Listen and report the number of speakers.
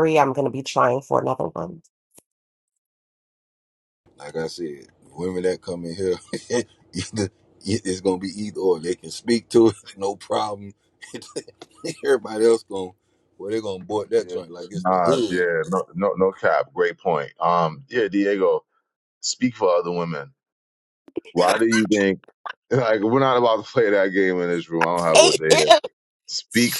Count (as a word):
three